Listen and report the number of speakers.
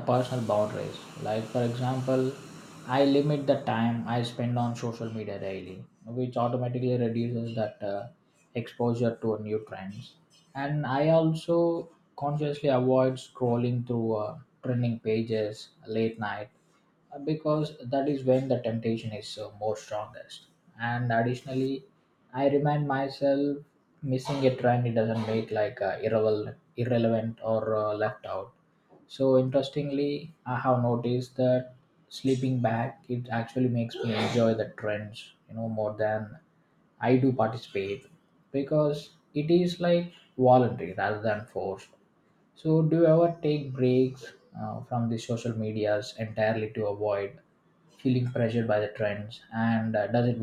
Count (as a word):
one